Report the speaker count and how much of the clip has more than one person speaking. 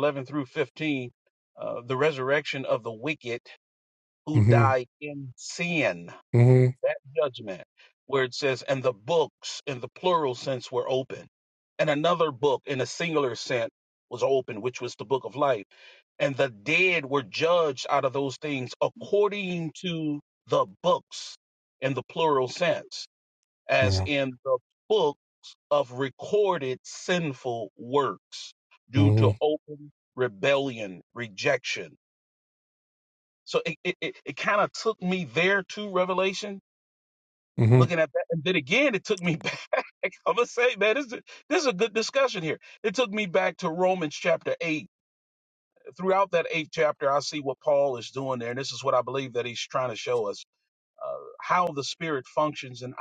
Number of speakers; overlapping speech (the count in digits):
2, about 2%